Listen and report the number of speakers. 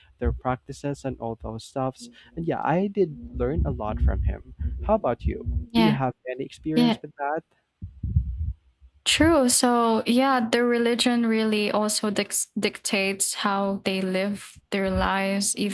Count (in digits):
2